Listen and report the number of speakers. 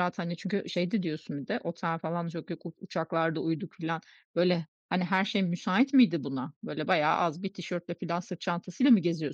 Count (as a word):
one